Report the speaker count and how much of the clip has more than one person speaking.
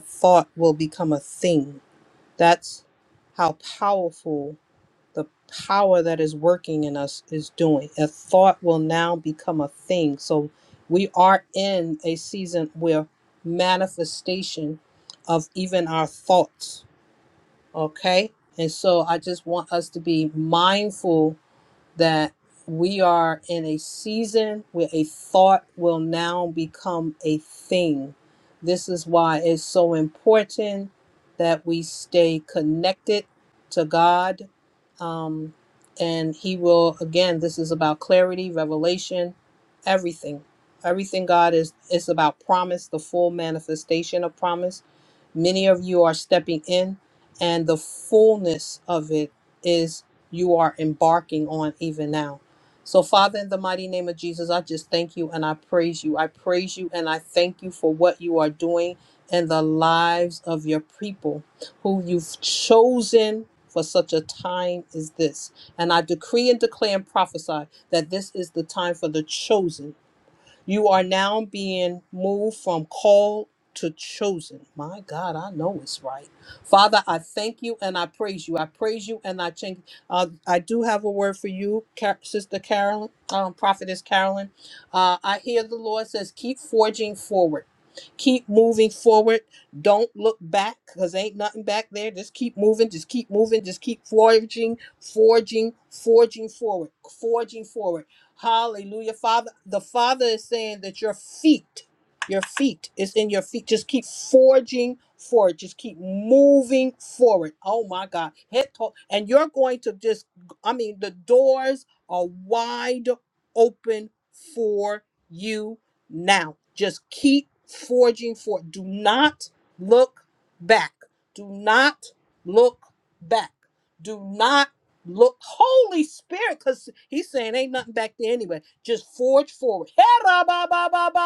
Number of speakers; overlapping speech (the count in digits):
1, no overlap